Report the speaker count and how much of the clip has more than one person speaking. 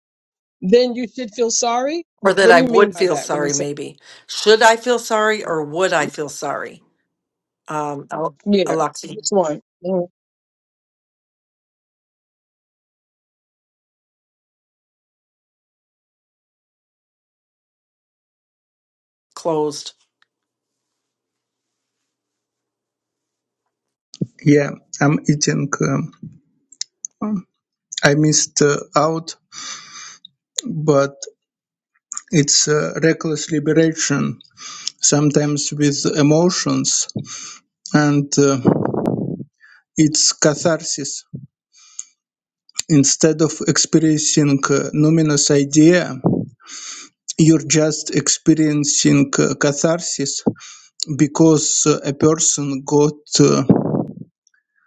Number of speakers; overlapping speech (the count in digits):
3, about 3%